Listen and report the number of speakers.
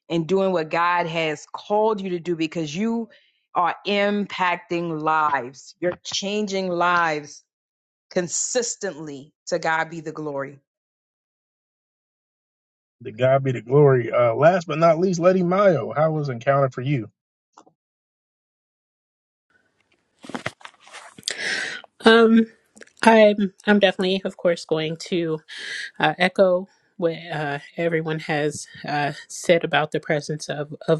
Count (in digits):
3